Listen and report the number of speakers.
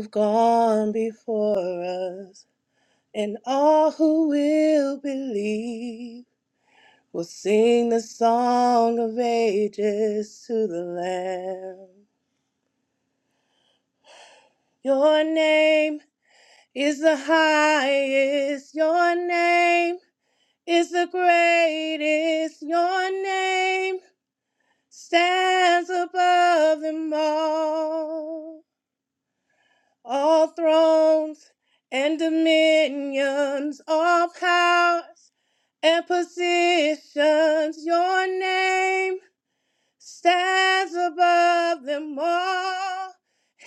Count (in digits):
1